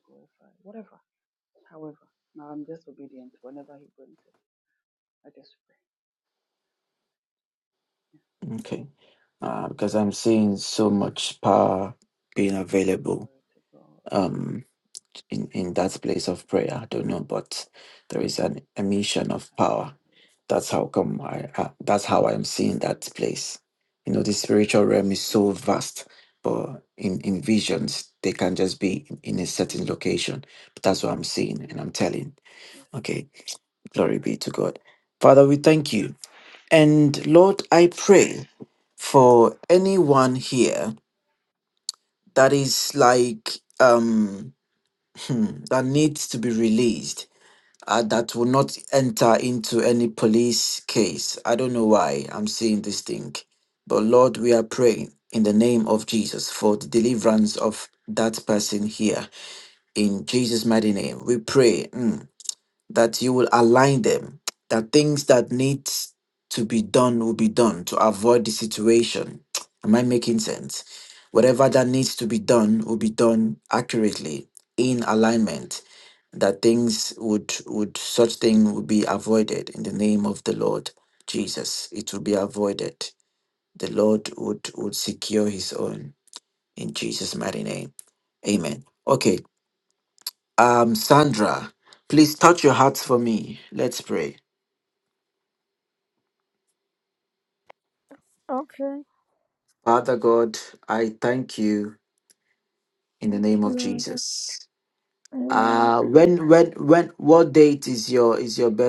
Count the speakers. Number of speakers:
three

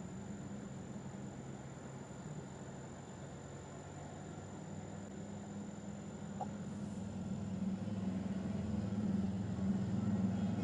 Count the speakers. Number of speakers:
zero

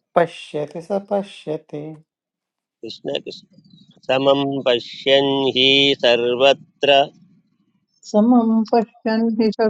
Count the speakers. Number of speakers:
three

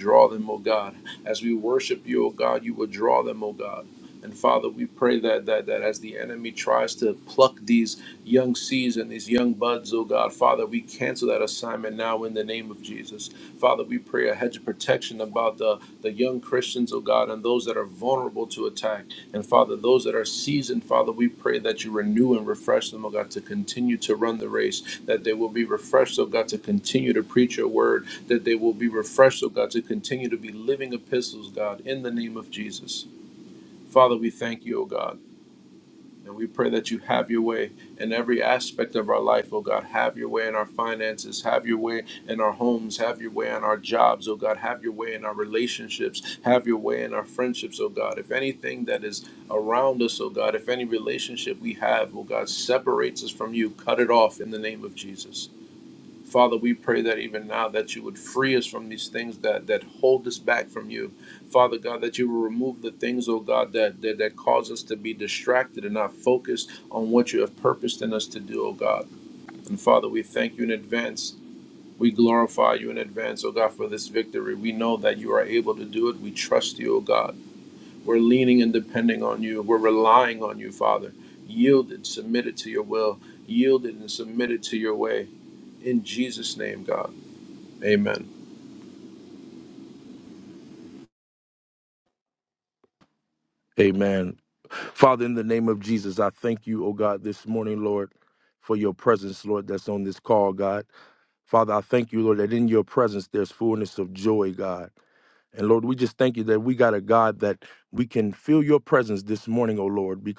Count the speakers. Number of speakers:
two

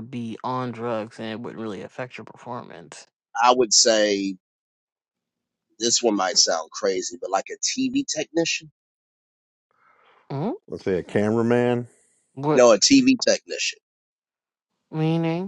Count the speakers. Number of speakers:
three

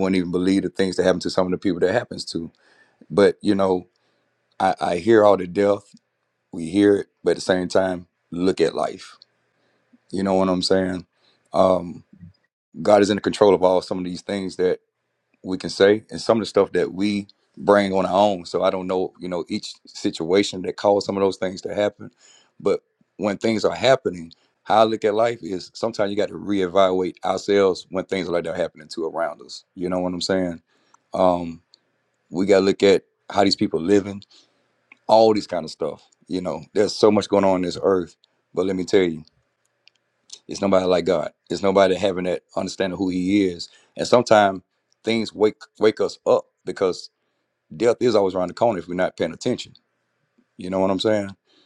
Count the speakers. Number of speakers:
one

